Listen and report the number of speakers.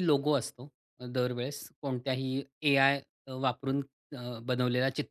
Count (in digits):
1